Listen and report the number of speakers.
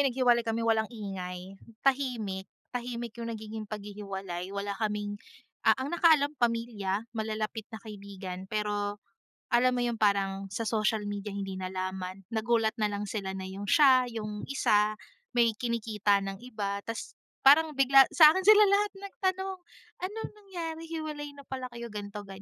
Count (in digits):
1